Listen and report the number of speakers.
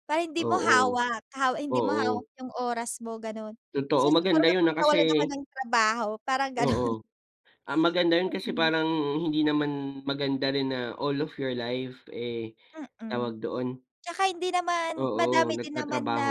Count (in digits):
2